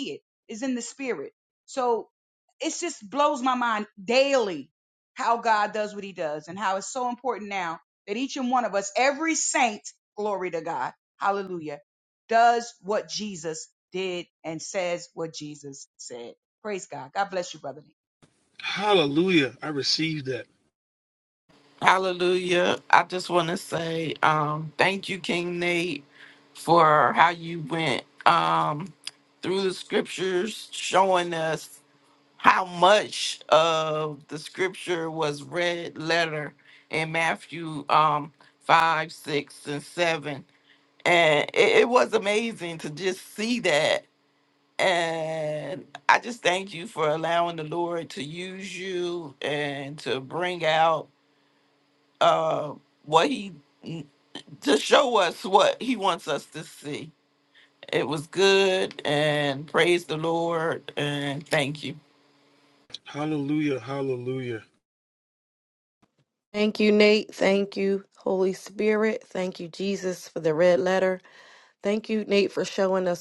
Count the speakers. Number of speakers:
4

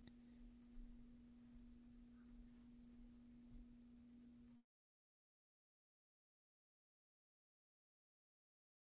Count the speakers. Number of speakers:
0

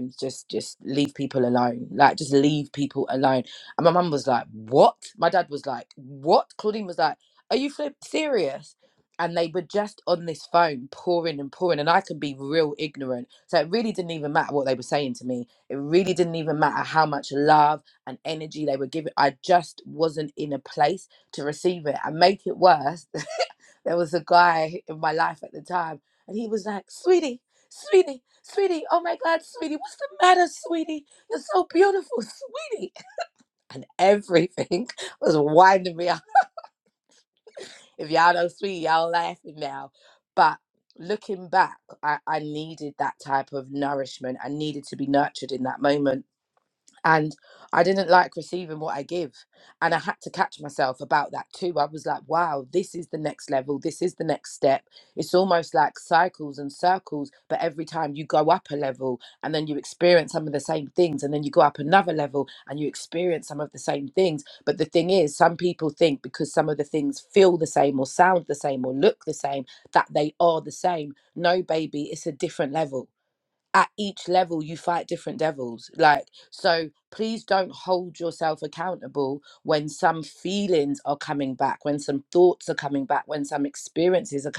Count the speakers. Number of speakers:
1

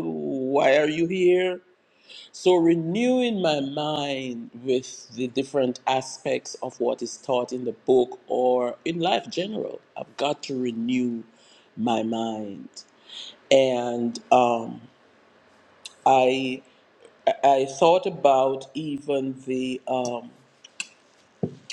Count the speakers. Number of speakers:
1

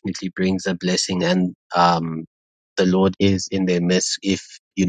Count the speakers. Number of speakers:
1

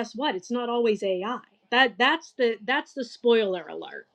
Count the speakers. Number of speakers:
1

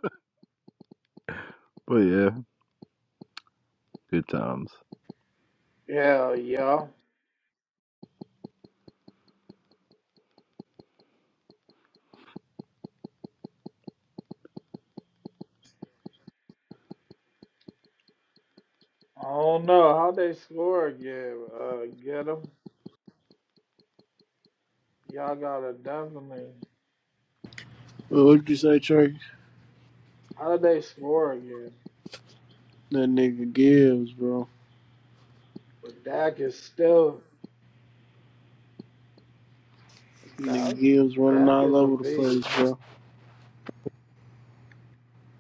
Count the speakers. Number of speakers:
3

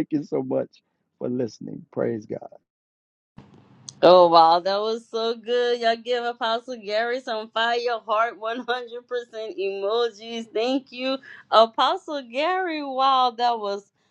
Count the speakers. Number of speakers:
2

